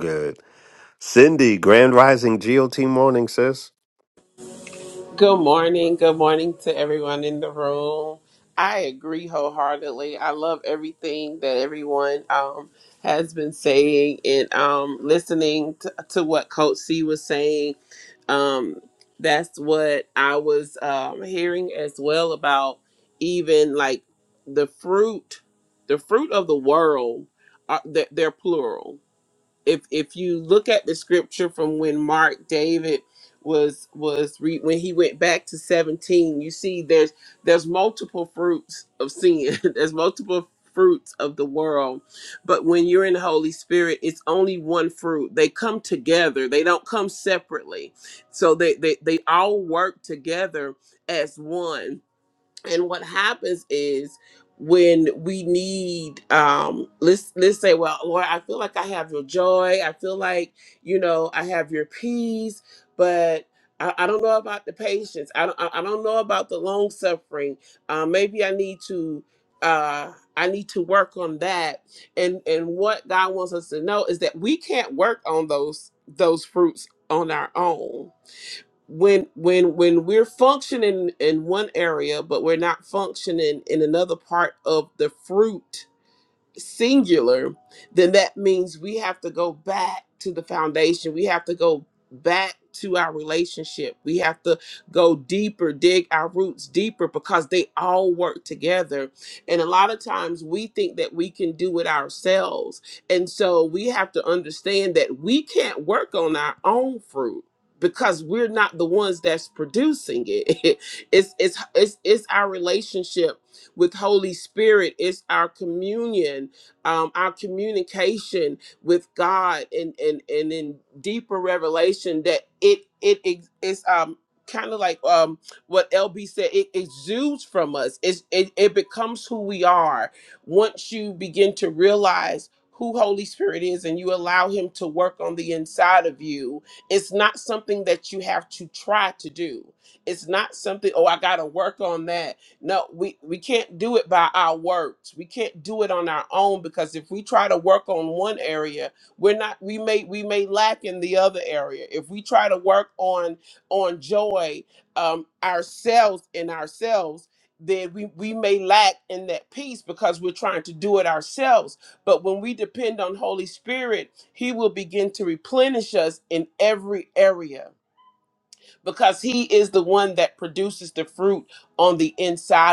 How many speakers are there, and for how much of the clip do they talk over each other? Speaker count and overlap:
two, no overlap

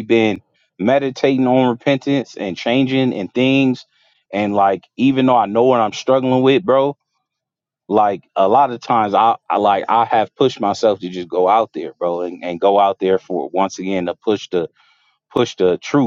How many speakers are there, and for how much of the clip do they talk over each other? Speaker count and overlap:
one, no overlap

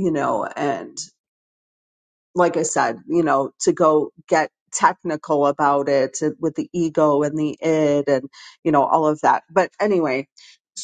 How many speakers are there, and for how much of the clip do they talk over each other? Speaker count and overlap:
one, no overlap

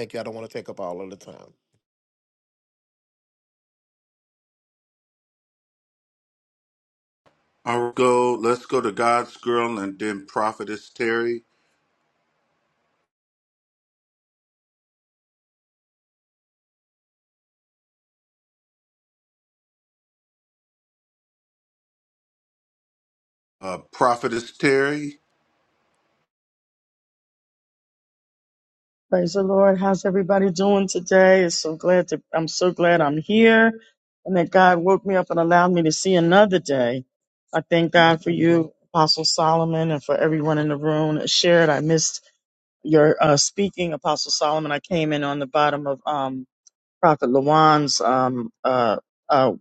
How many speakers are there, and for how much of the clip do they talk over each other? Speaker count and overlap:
three, no overlap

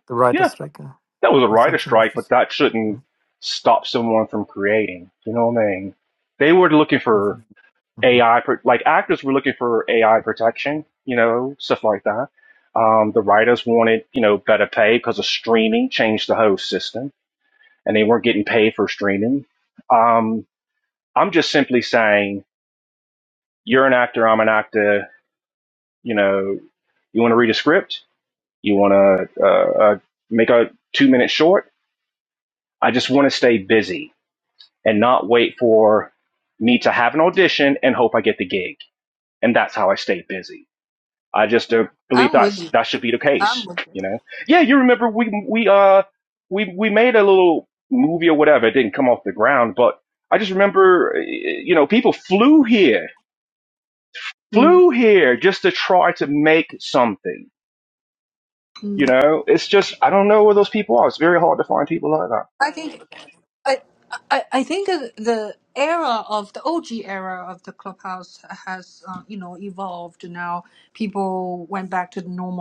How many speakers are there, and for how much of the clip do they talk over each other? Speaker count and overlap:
three, about 3%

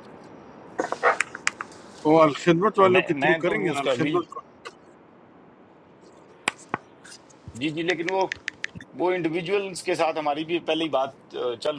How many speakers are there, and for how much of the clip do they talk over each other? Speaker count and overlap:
two, about 11%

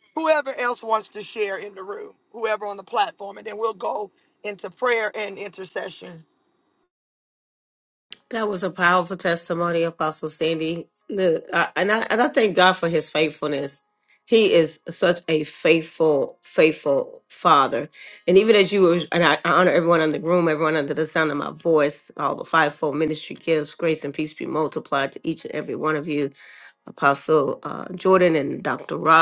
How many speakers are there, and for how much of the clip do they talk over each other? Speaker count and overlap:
two, no overlap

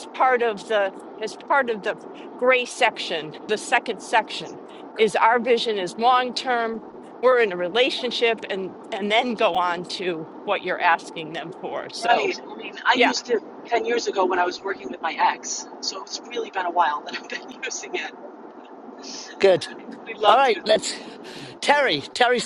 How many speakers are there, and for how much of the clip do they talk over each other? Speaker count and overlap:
three, about 7%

